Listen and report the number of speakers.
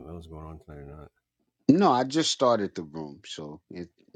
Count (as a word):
two